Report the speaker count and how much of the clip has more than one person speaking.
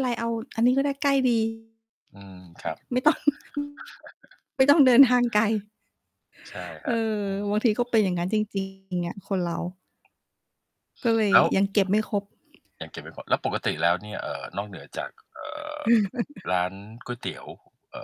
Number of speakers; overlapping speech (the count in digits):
2, about 2%